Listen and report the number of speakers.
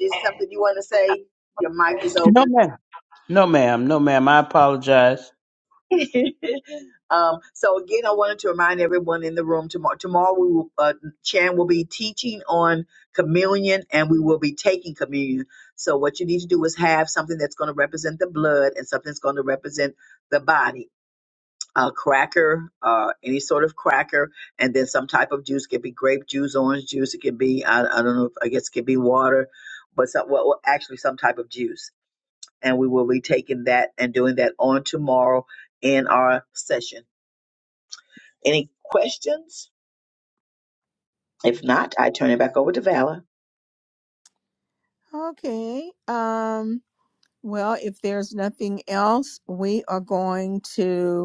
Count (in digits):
3